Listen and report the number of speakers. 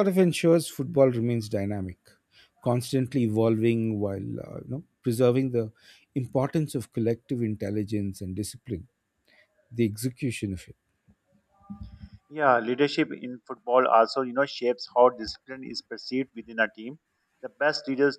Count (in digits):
2